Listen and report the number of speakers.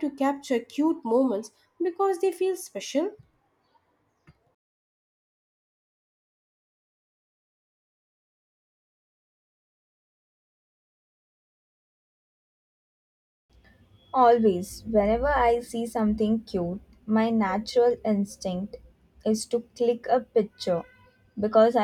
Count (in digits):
2